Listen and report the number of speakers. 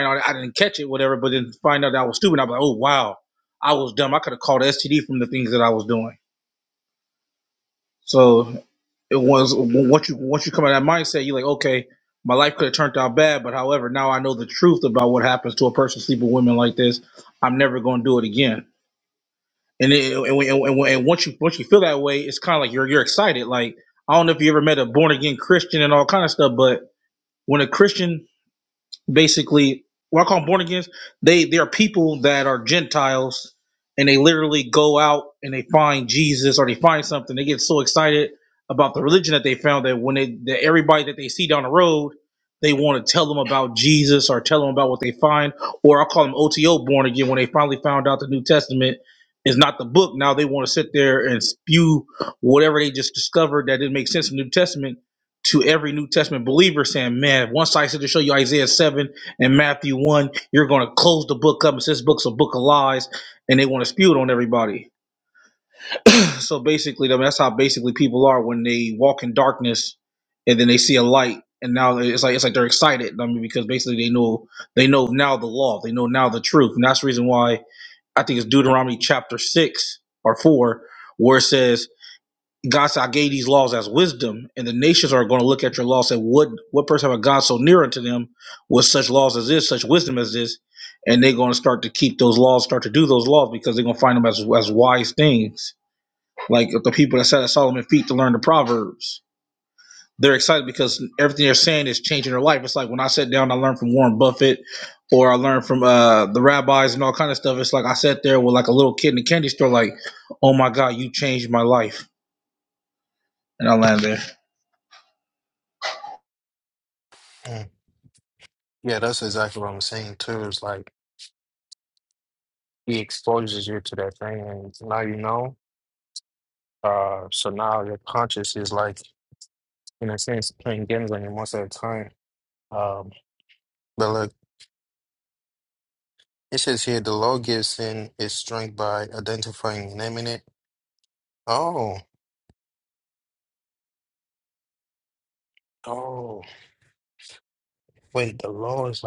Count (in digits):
2